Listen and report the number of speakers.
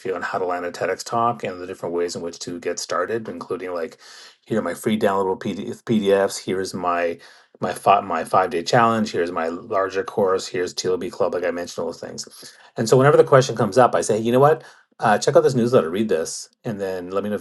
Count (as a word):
one